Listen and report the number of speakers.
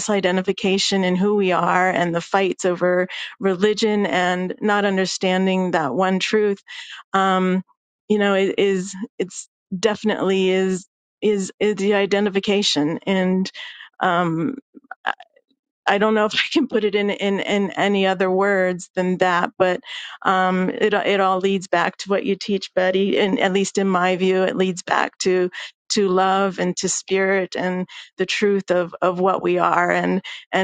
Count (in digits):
1